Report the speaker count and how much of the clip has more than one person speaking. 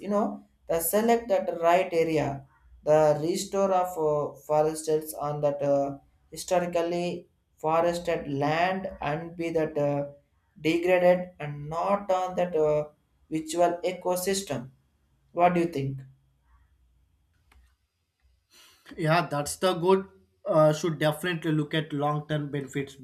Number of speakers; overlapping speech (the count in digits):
2, no overlap